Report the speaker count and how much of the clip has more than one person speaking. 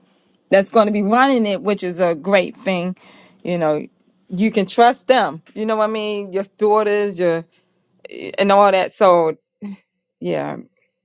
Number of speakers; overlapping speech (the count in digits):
1, no overlap